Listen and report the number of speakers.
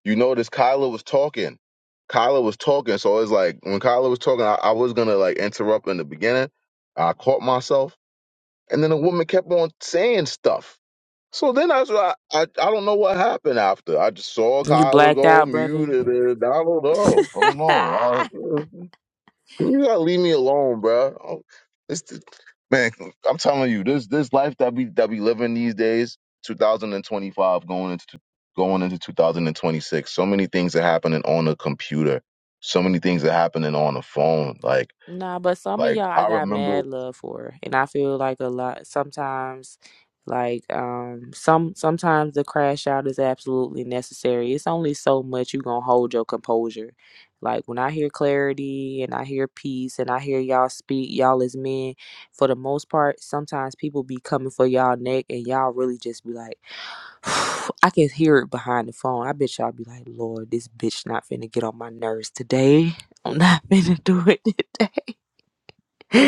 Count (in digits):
2